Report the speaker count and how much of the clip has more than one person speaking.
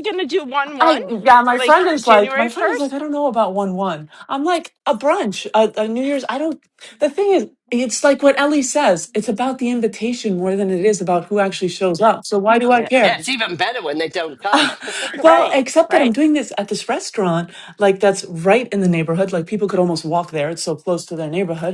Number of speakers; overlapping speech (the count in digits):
3, about 11%